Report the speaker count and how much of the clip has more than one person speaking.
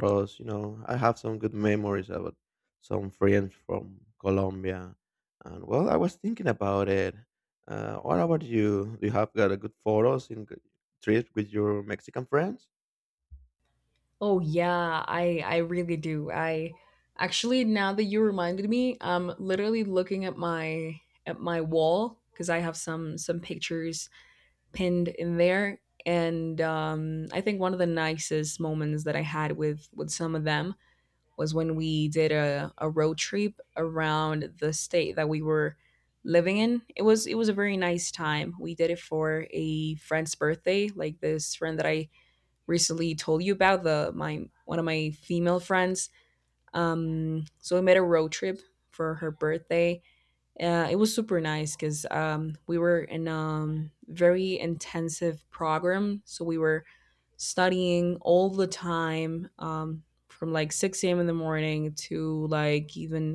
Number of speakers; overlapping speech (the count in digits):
2, no overlap